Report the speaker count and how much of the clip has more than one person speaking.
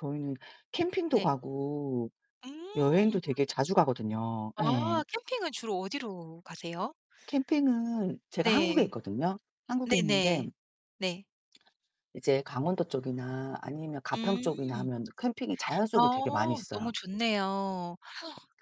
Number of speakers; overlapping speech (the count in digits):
2, about 16%